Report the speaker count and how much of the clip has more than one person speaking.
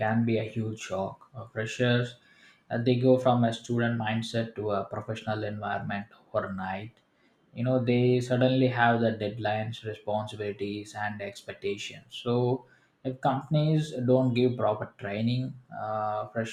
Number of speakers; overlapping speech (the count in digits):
1, no overlap